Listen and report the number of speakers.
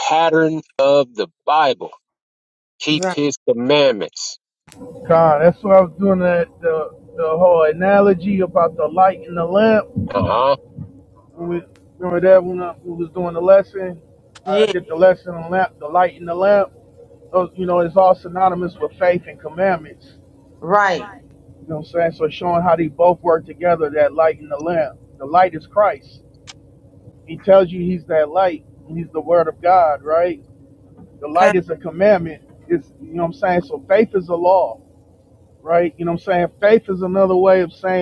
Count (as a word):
three